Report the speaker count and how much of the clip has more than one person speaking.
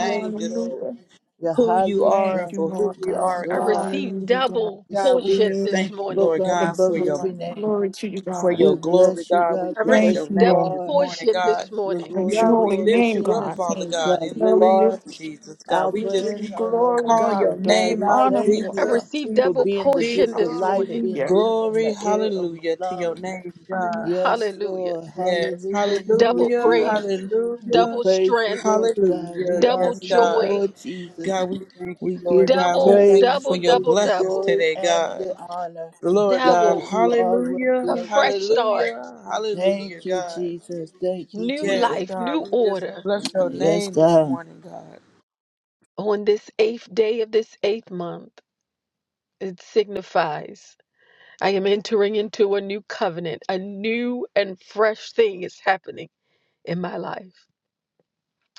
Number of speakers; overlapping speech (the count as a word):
four, about 63%